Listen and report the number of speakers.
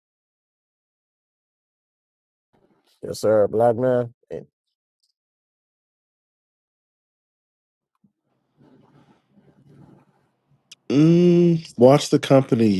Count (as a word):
two